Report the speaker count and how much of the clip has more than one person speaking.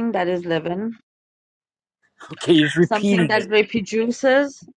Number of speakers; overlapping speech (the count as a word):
two, about 13%